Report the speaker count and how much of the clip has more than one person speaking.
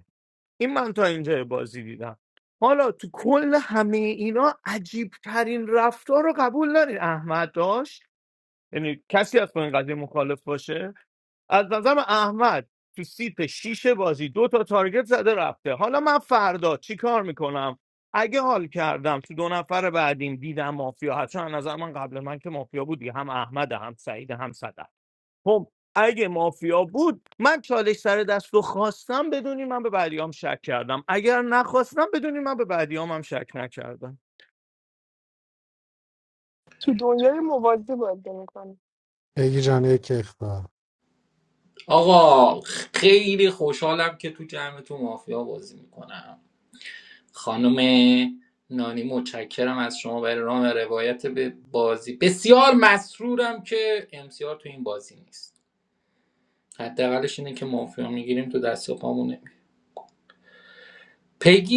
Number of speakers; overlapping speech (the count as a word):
four, no overlap